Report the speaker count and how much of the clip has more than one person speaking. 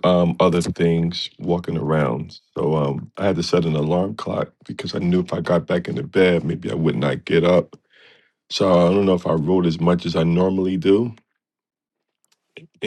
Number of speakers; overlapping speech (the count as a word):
one, no overlap